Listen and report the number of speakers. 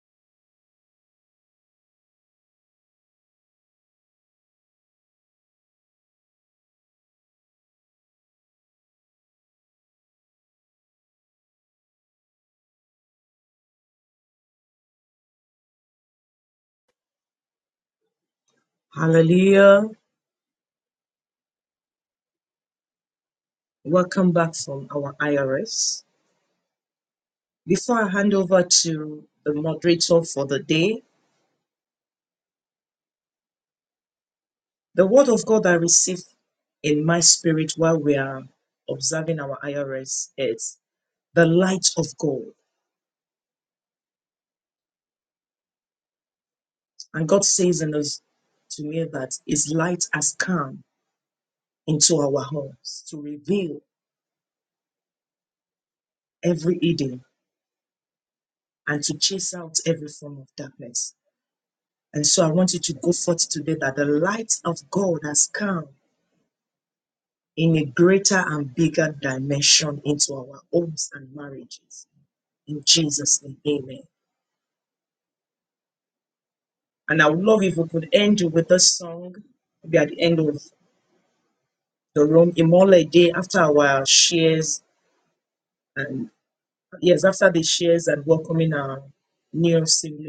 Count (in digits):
1